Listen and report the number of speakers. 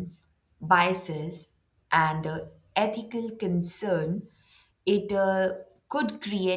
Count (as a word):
one